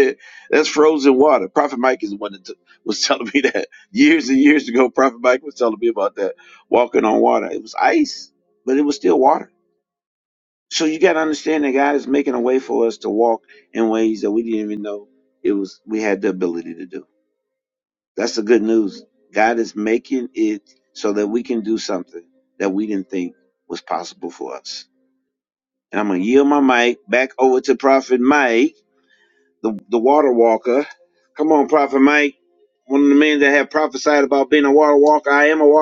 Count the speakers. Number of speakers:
1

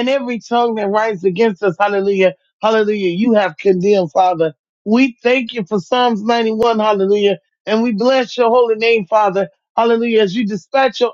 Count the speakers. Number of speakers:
1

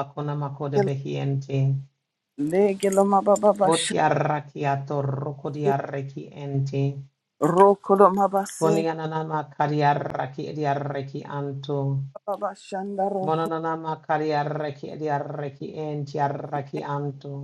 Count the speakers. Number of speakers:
2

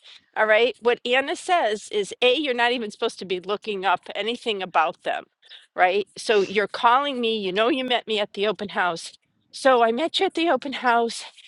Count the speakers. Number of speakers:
1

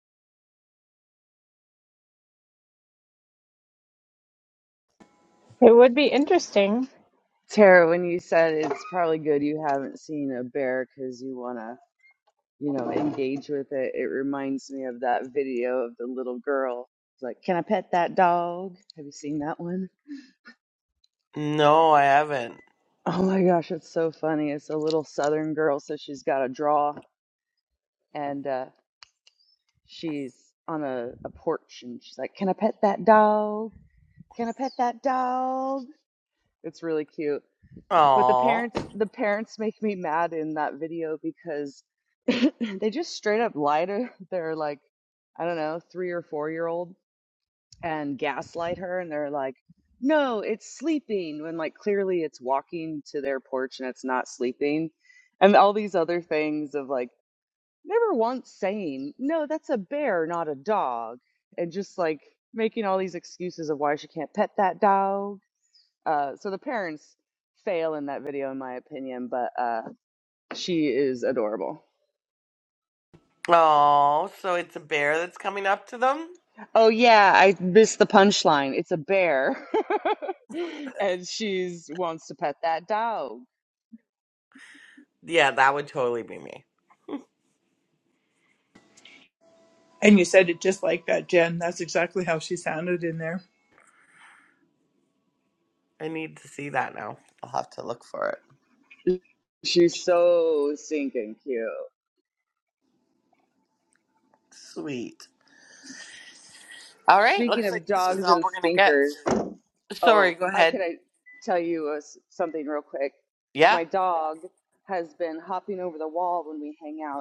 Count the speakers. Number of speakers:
4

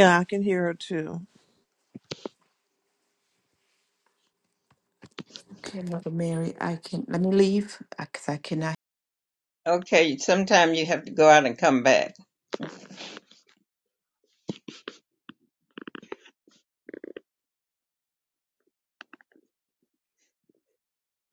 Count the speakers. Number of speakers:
3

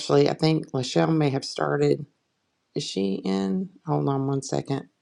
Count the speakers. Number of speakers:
1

